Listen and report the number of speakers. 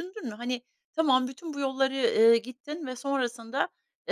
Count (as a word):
one